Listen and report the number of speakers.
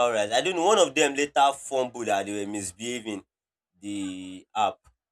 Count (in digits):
1